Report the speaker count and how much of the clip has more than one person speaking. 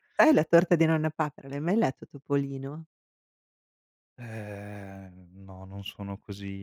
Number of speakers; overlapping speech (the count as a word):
two, no overlap